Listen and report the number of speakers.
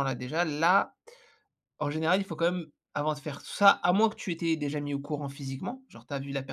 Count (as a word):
one